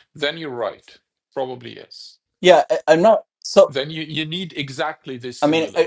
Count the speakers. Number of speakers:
2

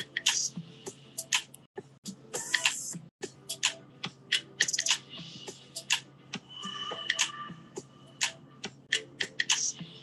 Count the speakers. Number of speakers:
0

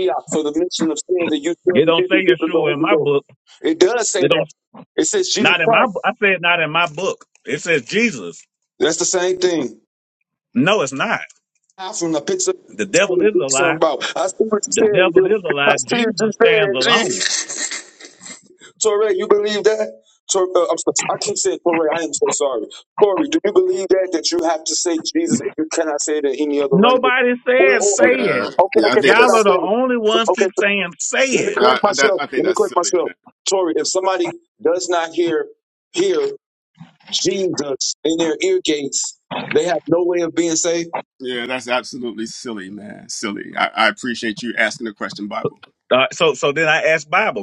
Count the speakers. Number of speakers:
3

